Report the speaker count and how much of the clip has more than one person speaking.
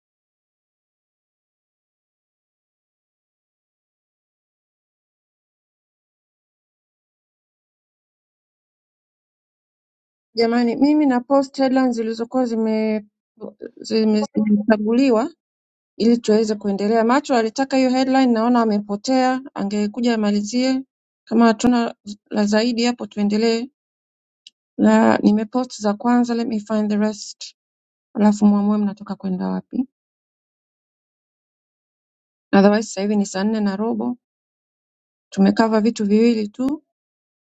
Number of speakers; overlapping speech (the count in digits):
1, no overlap